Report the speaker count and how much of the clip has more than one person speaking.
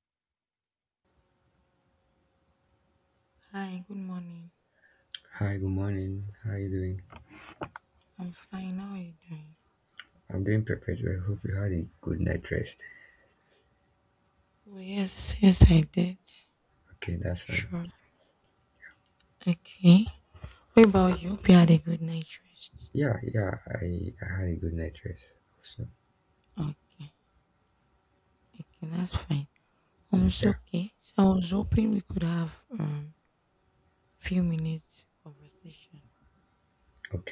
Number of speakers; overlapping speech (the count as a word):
two, about 1%